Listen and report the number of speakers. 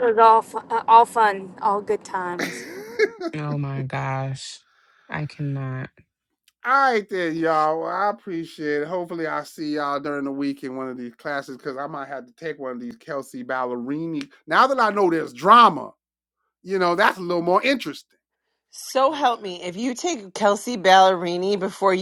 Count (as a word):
four